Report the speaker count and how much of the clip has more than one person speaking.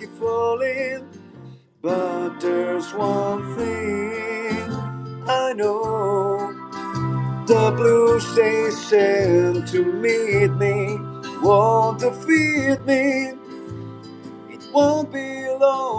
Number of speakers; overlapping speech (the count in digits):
1, no overlap